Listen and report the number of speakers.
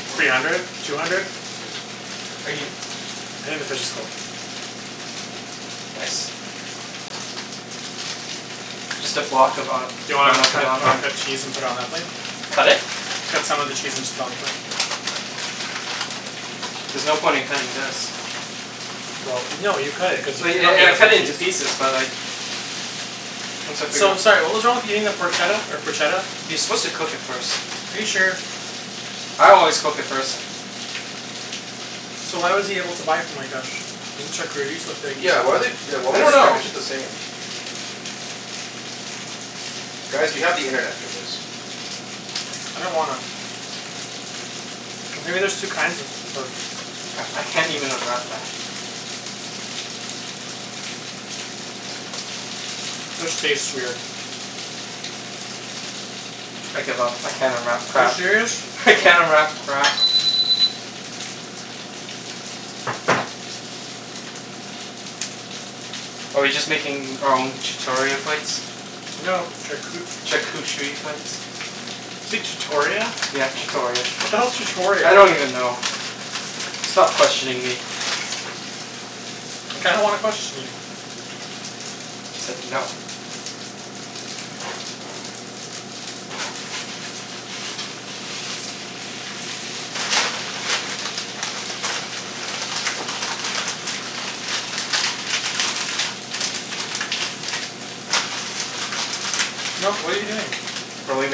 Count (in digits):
3